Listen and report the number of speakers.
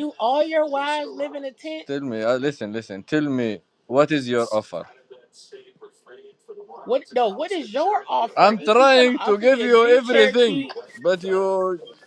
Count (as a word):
two